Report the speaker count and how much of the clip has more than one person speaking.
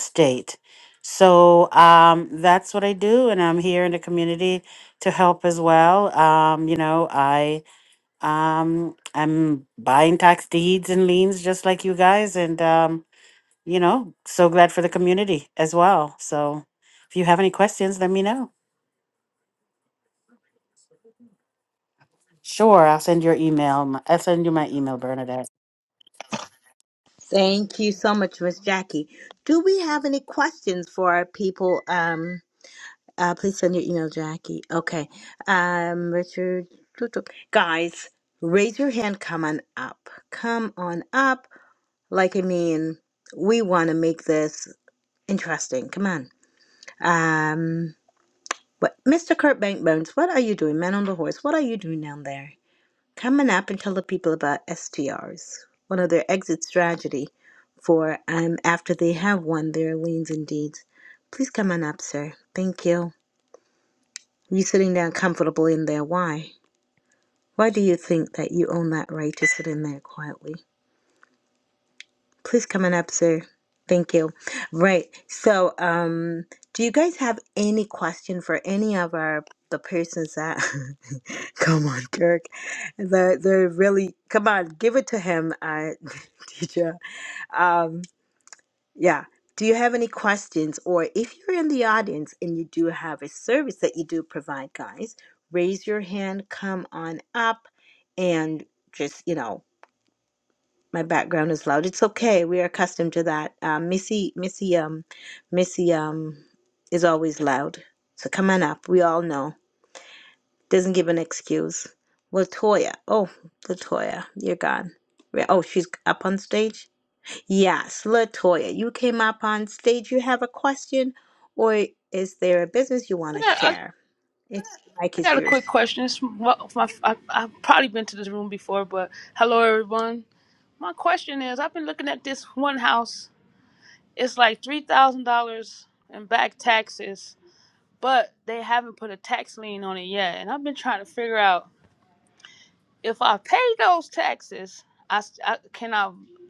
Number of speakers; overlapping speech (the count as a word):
three, about 1%